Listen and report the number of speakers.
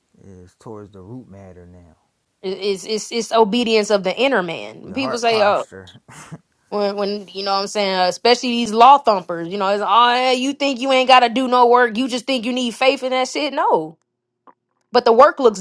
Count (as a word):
two